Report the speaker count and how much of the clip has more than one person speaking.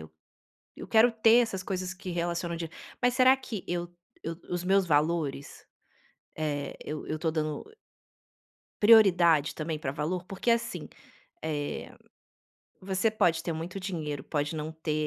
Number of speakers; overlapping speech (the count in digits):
1, no overlap